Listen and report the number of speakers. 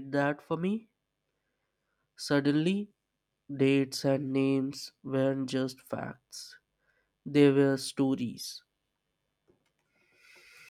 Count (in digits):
1